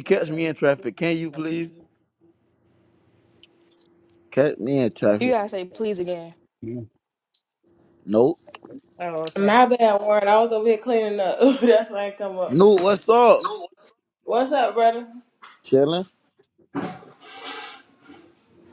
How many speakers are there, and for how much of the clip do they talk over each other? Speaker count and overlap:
3, about 2%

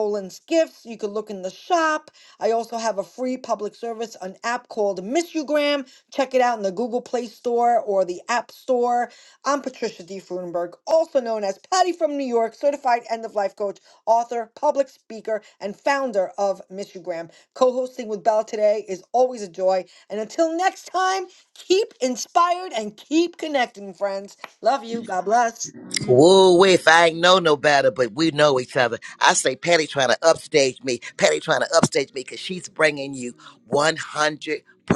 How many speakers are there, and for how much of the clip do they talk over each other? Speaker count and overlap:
2, no overlap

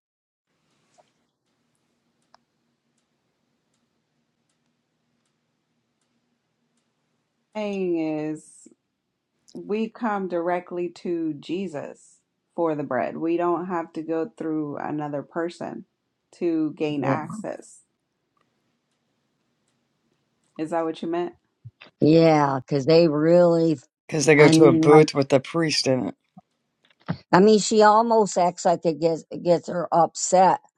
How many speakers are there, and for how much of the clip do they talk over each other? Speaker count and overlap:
3, about 3%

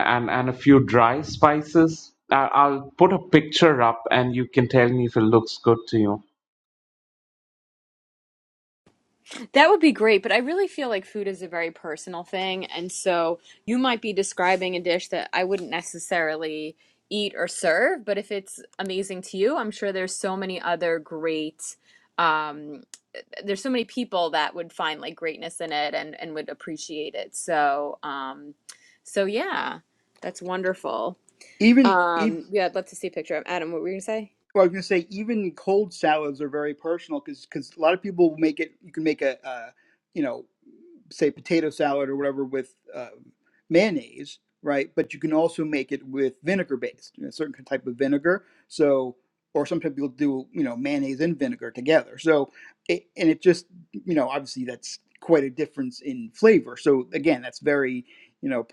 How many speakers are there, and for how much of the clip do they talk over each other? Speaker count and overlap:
3, about 1%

